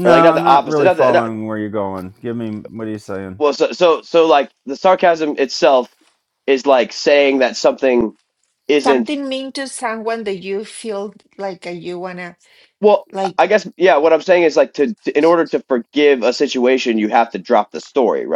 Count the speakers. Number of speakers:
3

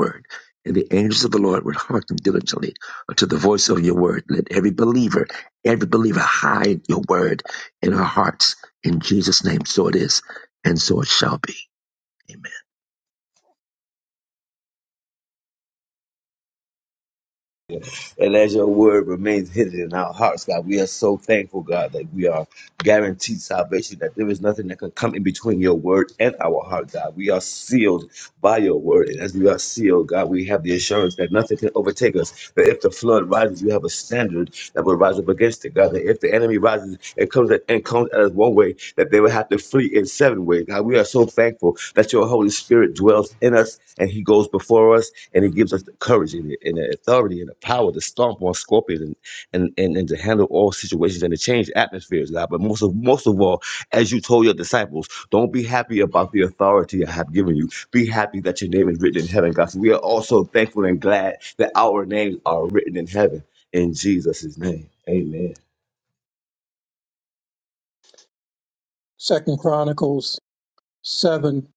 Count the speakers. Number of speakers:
3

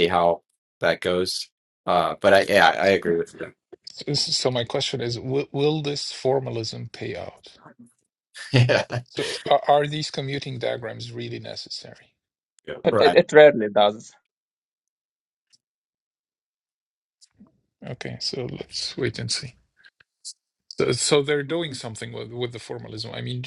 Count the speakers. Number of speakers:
3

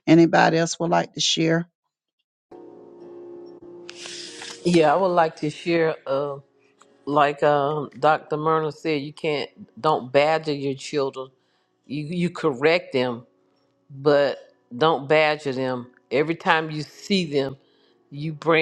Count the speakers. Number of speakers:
2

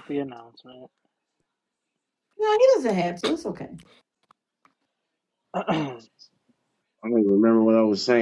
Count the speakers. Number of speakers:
3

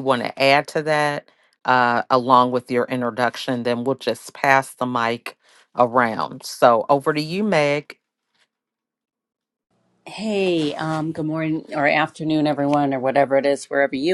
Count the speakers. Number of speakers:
2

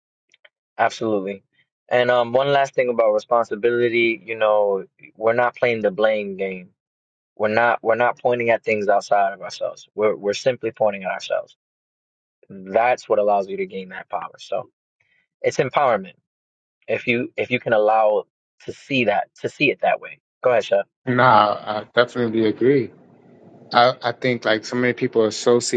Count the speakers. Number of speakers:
2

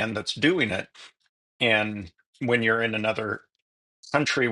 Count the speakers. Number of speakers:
1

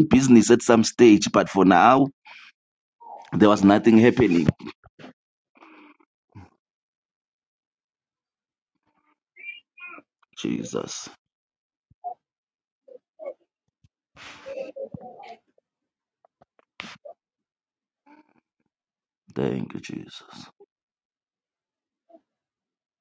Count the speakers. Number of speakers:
1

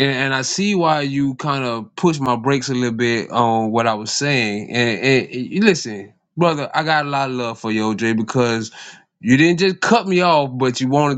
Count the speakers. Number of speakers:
1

